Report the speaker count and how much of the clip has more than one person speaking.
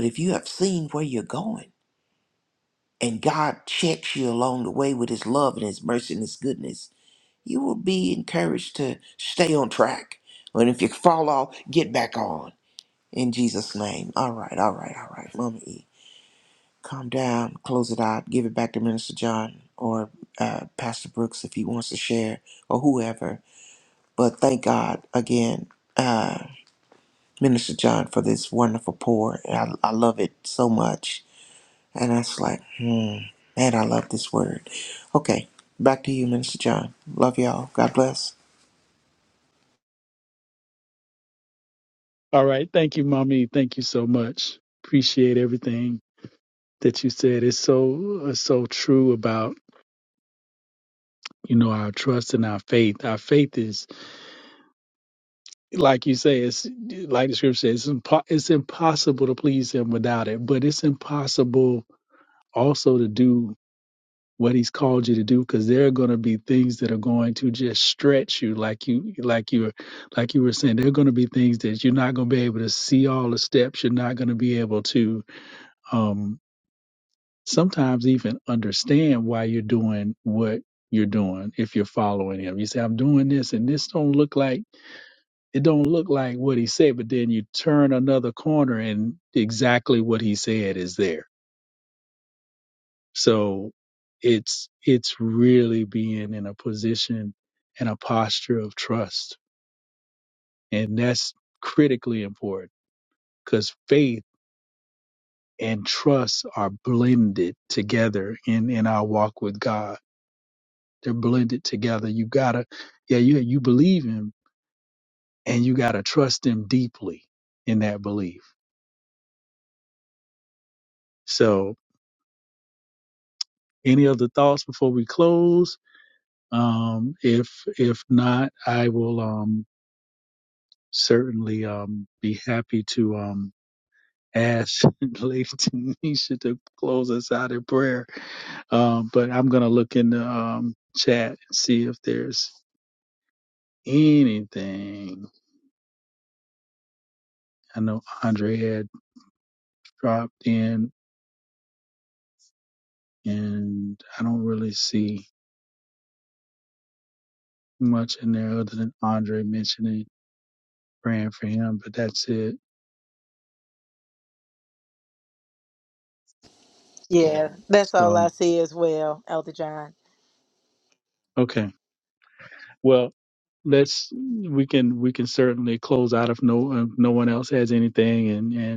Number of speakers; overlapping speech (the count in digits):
3, under 1%